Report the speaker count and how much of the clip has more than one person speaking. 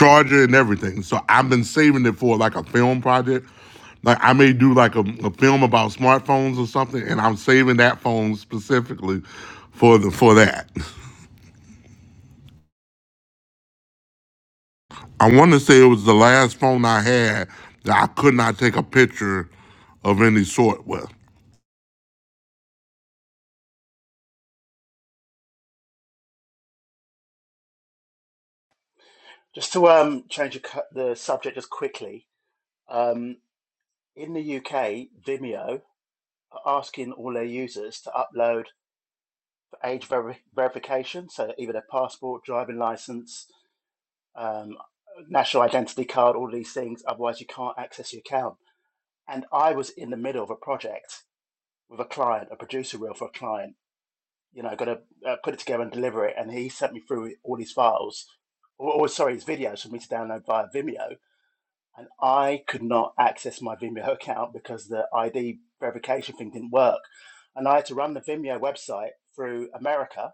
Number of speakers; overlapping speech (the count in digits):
2, no overlap